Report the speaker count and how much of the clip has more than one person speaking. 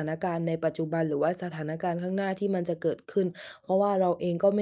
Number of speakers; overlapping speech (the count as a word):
one, no overlap